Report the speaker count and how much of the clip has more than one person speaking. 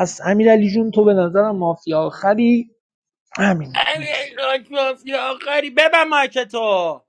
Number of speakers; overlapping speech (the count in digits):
2, about 1%